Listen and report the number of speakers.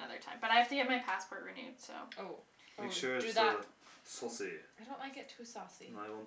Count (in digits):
3